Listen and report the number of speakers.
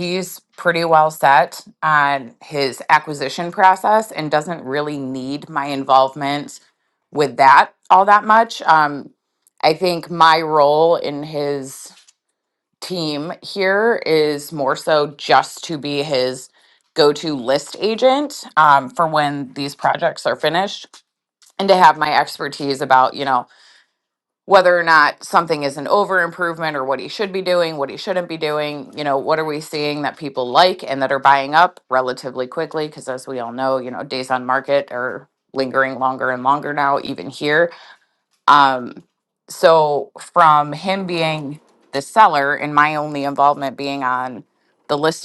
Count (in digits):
1